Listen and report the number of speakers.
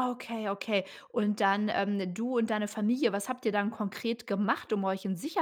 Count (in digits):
1